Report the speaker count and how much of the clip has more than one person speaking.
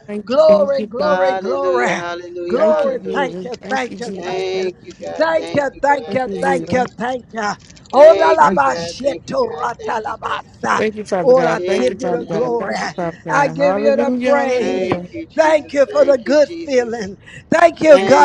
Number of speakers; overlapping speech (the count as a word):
three, about 68%